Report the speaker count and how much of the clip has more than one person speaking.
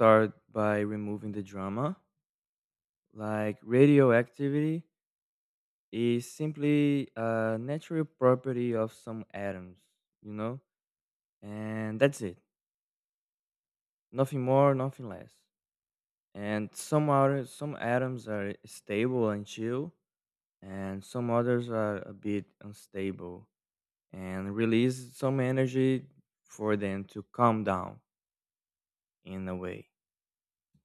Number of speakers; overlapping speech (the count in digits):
1, no overlap